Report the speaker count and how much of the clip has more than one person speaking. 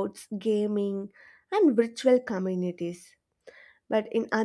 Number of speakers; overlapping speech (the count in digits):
1, no overlap